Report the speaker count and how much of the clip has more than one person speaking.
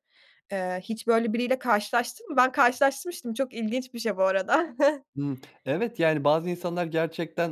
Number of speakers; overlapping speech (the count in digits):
2, no overlap